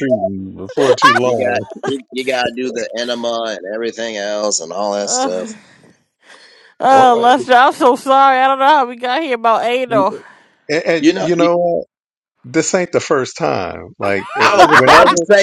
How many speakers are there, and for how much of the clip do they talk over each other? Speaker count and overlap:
3, about 18%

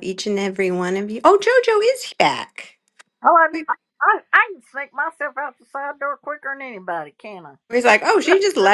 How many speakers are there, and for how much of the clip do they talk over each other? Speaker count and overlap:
2, about 1%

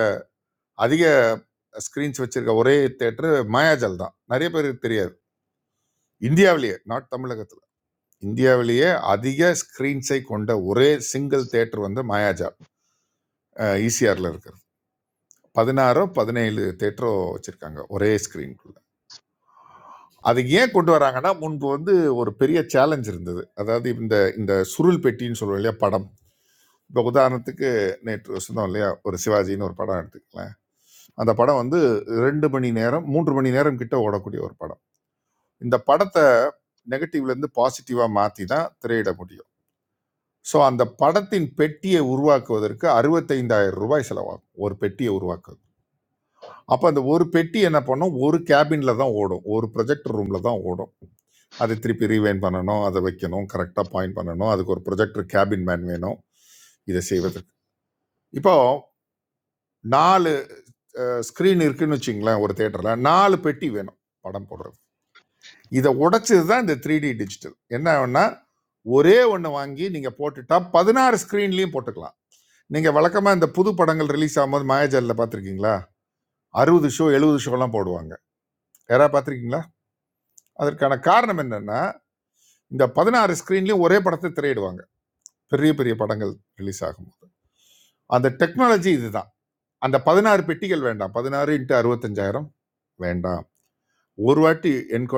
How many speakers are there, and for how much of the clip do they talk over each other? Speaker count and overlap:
1, no overlap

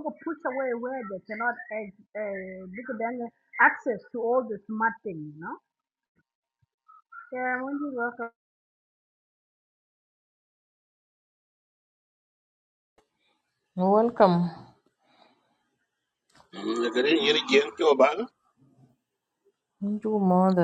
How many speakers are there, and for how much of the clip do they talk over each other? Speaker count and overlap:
3, no overlap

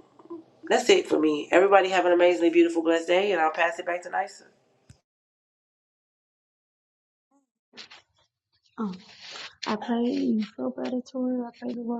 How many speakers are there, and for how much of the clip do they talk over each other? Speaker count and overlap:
2, no overlap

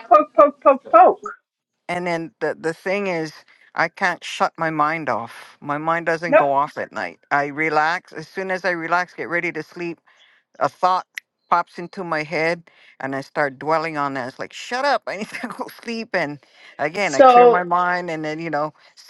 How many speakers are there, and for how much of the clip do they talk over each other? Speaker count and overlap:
2, about 3%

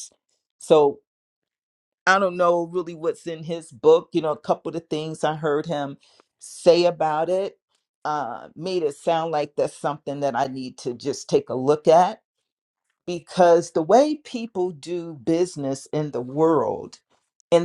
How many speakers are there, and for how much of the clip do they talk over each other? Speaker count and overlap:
1, no overlap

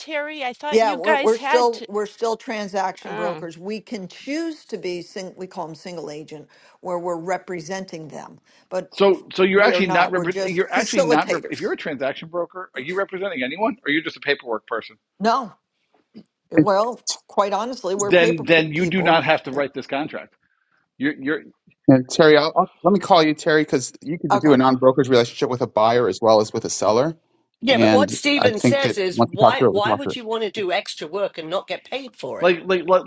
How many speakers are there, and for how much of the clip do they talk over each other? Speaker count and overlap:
5, about 24%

